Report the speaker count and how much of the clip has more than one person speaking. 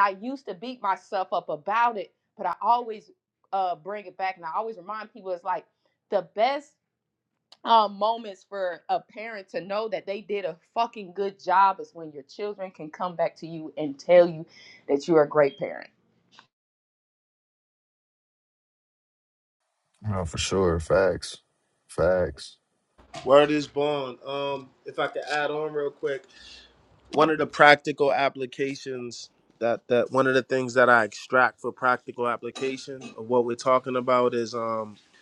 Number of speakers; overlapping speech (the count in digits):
3, no overlap